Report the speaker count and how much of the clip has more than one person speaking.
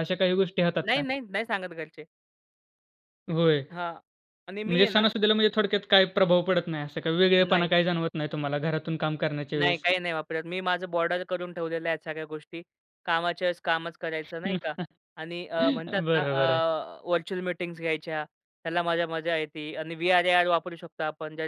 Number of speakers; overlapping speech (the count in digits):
2, about 8%